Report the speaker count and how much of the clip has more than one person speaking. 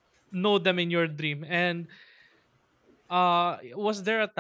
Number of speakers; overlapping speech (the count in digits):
1, no overlap